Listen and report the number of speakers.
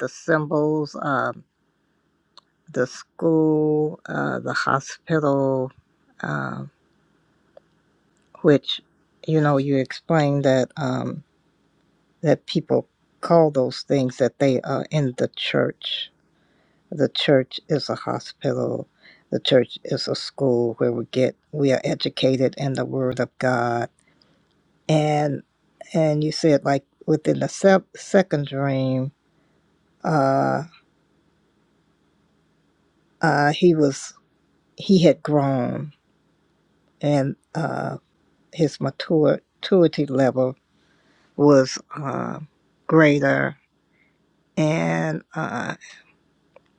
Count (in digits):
1